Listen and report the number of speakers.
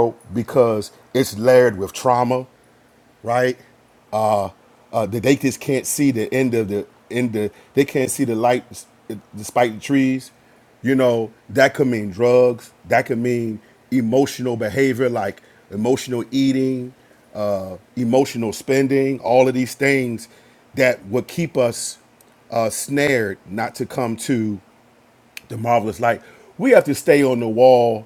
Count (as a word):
one